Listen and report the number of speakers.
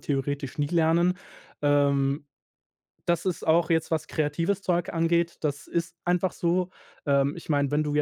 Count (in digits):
1